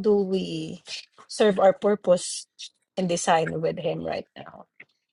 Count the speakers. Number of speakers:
one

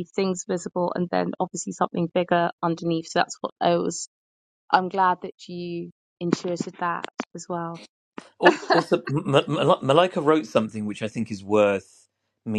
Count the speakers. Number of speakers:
two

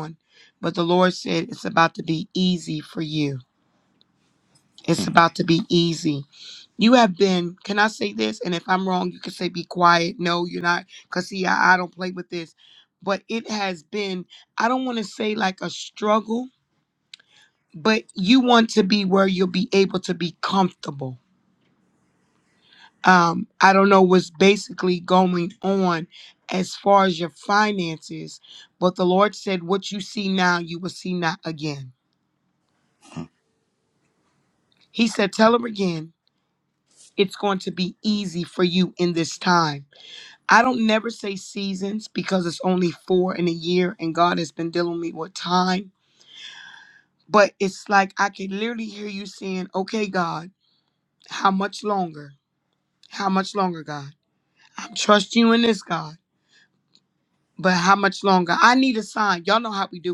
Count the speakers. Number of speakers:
one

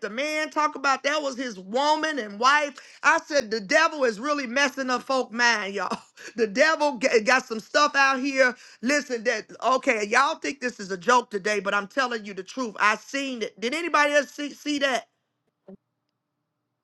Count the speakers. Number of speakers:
one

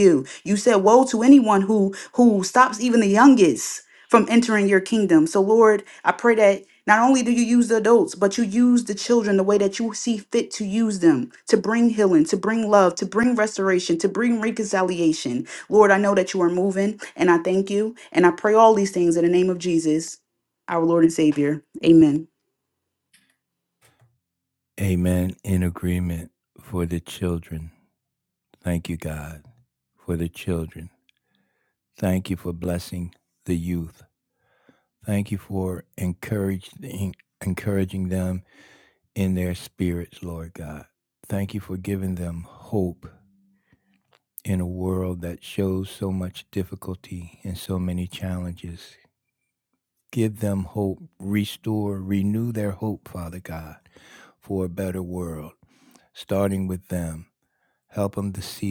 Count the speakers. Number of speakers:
two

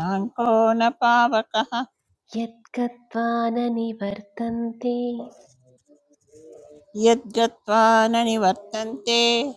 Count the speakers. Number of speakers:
two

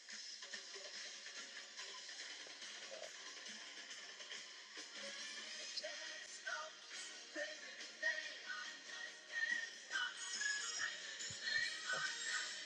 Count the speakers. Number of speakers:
zero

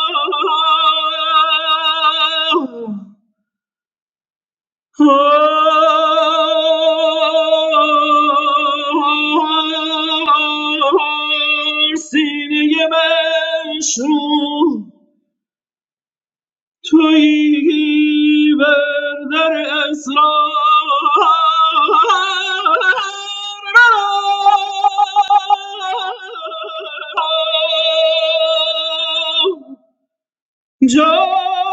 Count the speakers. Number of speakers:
one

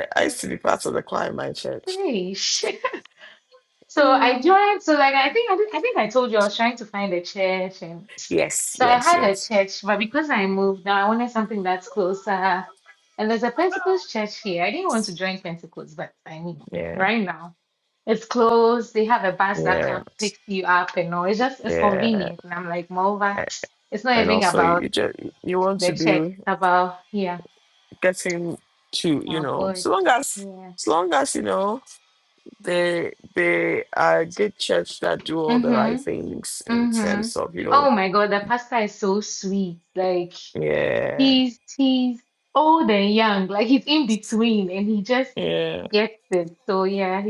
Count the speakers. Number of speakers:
two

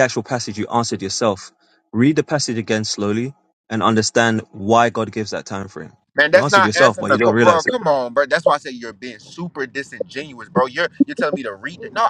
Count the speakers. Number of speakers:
two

